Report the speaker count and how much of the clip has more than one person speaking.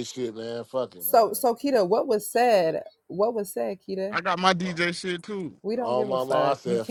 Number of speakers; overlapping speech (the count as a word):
three, about 20%